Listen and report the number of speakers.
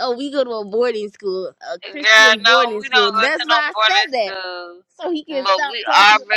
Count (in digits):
2